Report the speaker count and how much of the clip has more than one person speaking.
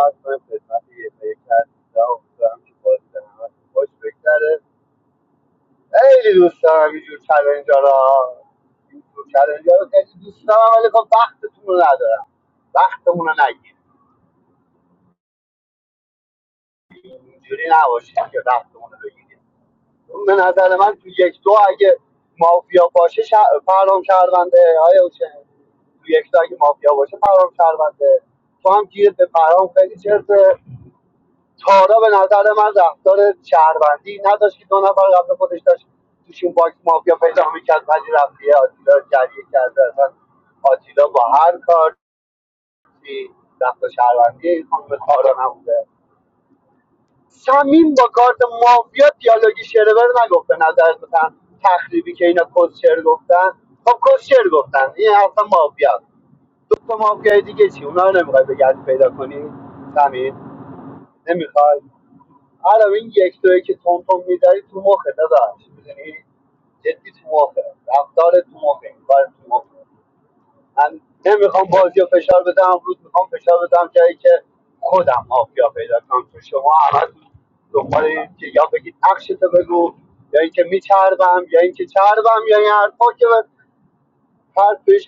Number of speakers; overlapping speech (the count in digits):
1, no overlap